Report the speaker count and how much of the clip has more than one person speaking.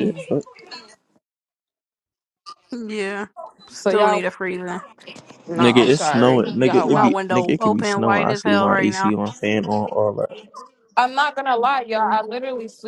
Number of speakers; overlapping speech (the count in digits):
3, about 32%